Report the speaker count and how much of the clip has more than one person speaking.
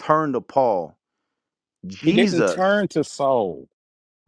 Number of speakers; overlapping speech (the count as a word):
two, about 18%